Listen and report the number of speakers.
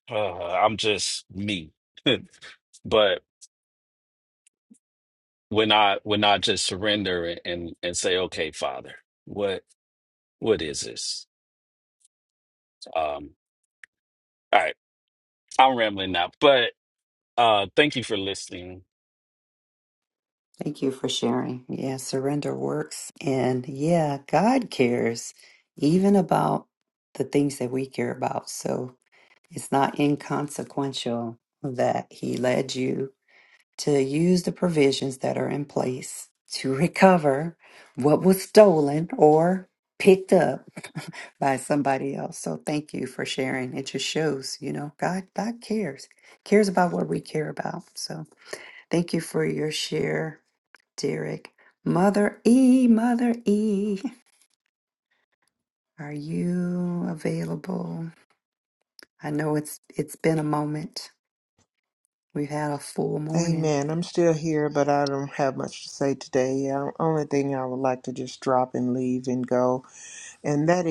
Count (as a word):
three